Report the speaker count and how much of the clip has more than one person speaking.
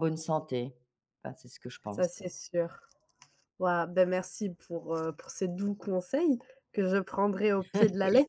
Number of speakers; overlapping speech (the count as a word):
two, about 3%